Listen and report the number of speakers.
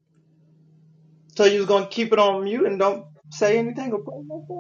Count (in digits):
1